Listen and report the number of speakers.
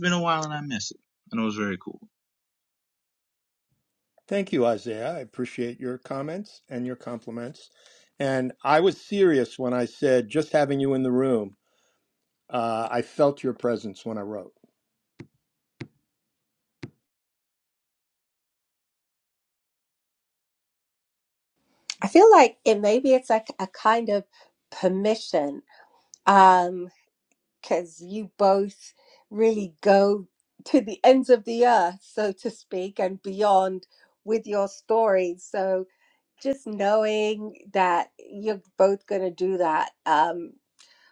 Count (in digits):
3